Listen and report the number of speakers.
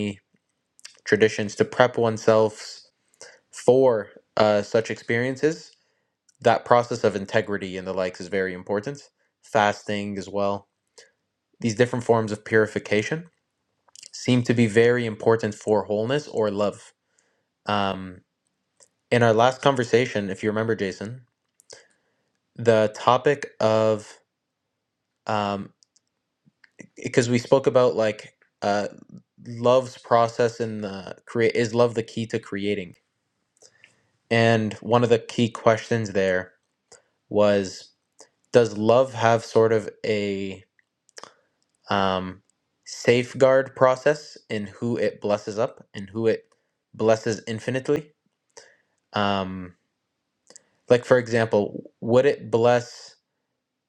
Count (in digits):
1